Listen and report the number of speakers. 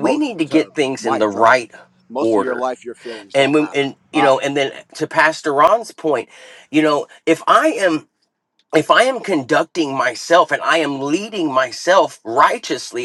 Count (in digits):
2